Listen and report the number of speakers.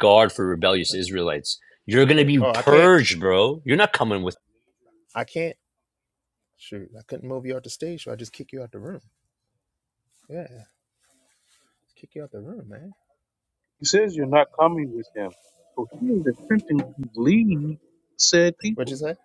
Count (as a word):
three